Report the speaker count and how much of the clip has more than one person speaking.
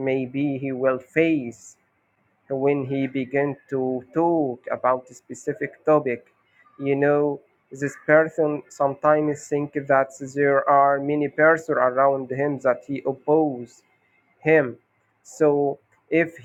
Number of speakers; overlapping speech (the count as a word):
one, no overlap